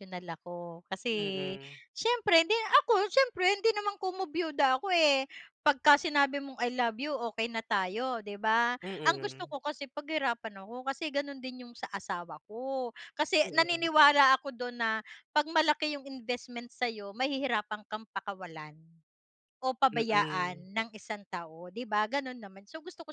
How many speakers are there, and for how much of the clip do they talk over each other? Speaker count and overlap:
2, about 7%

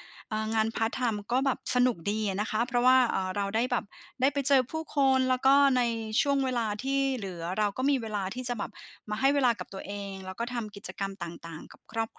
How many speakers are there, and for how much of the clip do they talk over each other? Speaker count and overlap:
1, no overlap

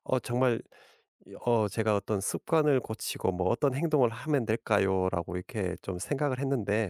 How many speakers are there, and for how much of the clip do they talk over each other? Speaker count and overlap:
1, no overlap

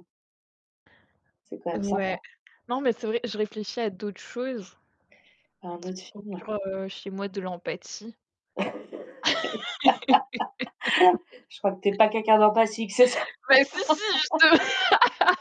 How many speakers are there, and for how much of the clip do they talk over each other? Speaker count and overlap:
2, about 7%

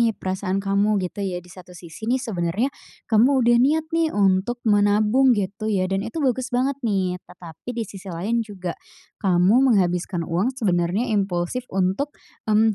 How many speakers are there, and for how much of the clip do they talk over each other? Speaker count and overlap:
1, no overlap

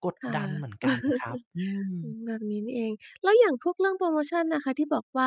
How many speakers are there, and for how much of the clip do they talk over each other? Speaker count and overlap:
2, about 4%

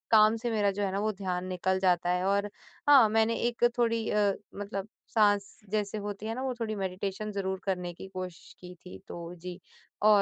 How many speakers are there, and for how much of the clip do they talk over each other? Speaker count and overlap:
1, no overlap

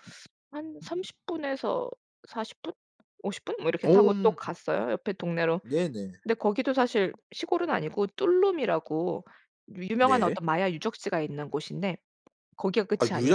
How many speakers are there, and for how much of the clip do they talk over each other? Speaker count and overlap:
2, about 9%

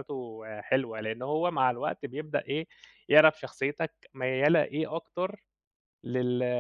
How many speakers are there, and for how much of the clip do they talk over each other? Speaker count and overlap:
1, no overlap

